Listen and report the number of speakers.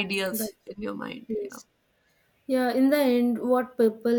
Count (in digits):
2